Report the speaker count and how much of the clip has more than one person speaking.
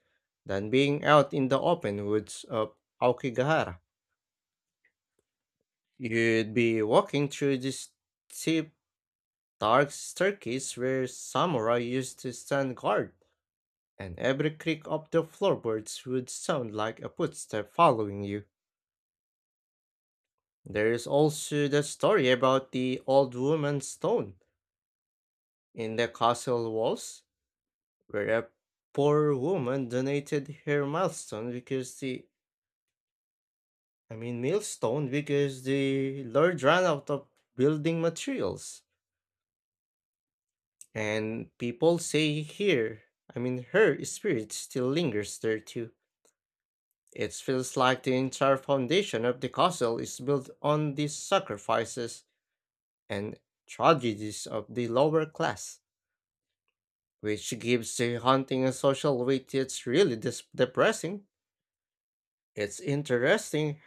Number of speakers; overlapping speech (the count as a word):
one, no overlap